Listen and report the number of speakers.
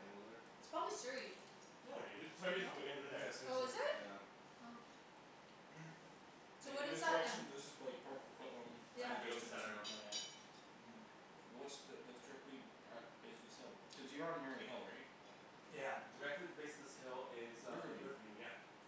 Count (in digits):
4